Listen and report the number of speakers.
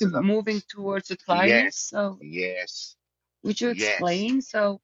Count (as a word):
two